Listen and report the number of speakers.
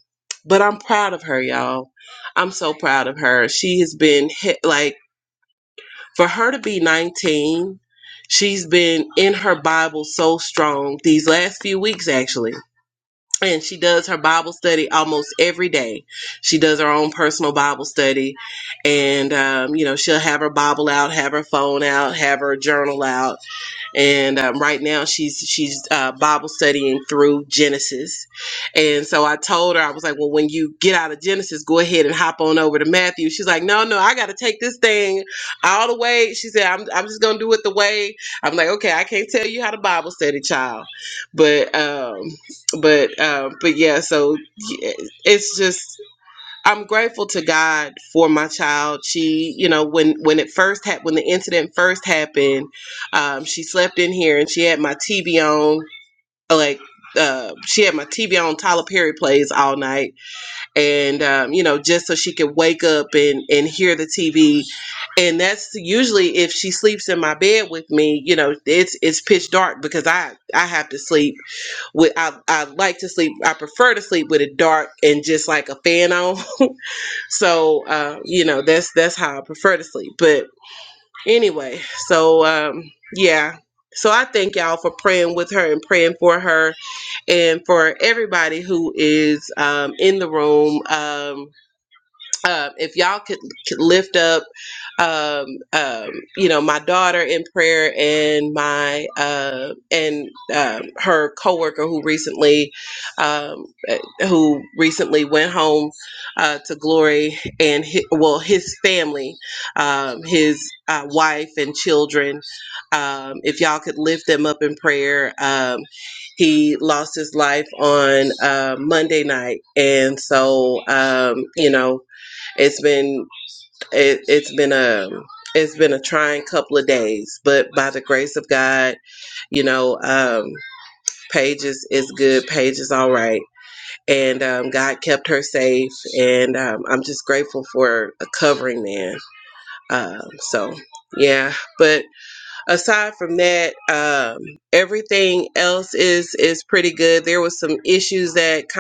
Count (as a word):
one